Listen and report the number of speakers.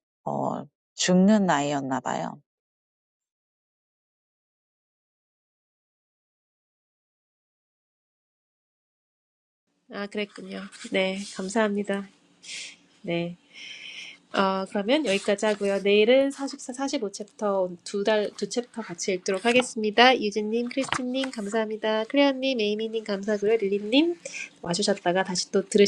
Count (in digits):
2